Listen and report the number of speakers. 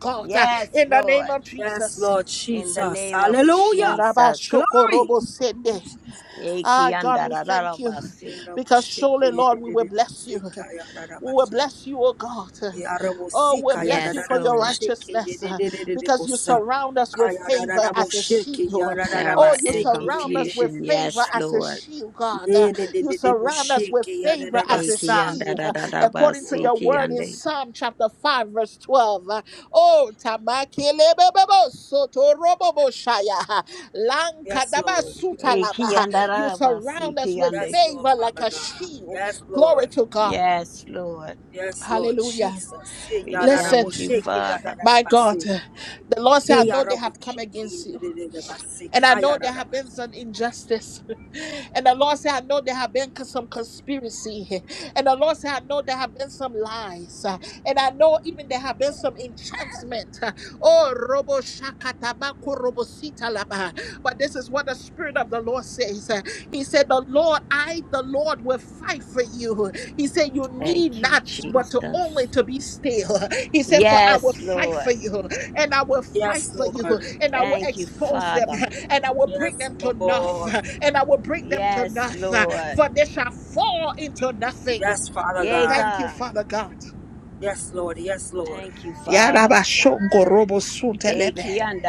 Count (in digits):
3